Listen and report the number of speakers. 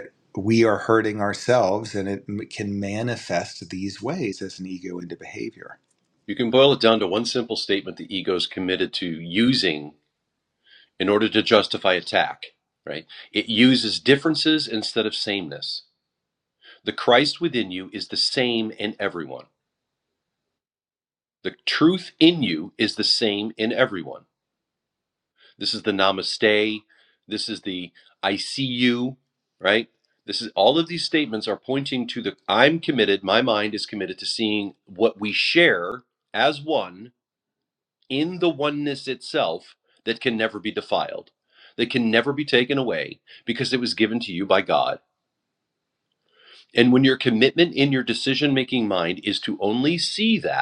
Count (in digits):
2